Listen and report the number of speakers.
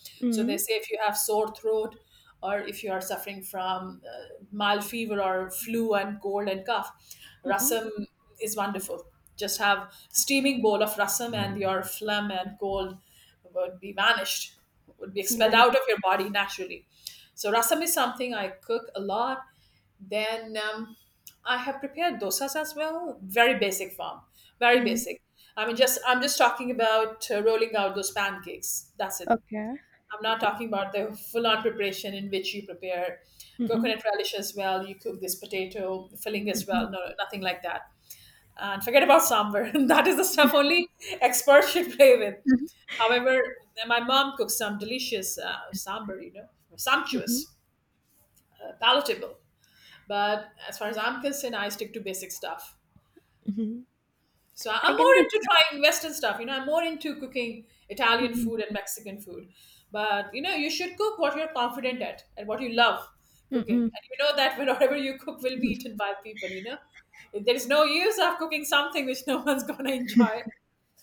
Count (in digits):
2